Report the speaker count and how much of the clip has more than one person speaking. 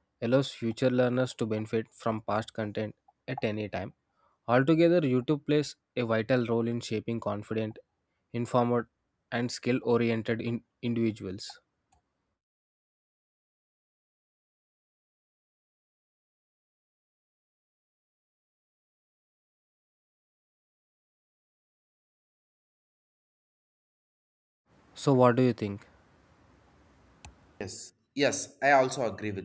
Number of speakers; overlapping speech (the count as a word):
two, no overlap